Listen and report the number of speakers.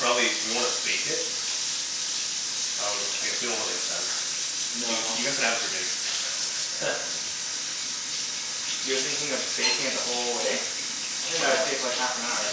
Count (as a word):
two